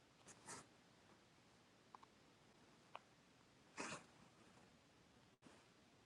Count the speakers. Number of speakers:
0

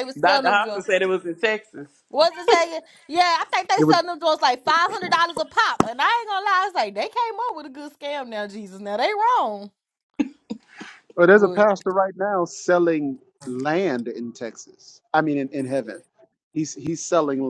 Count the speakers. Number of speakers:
3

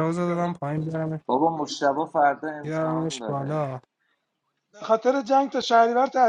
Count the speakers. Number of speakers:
3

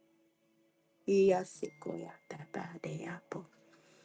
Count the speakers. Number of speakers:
1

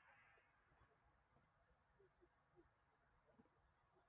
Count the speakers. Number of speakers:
0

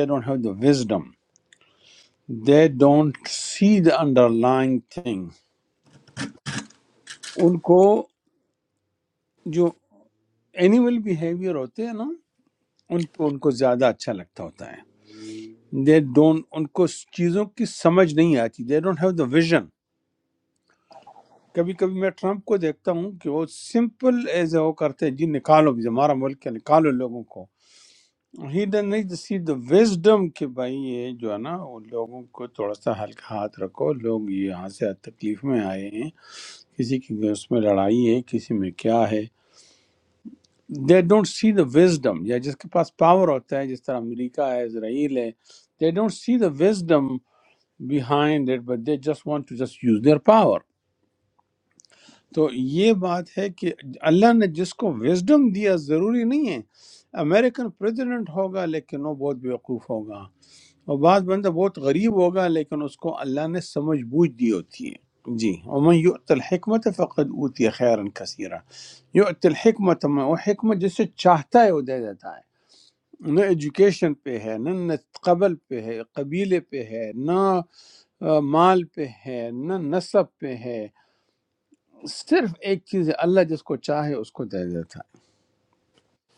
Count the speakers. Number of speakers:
1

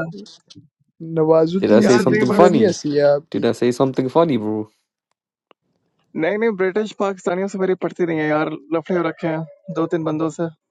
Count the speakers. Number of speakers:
3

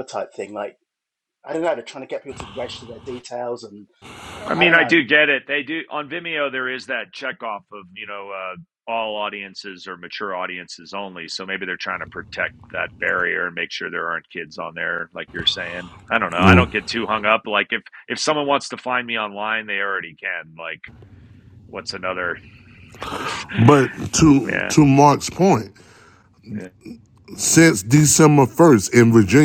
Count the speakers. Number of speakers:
3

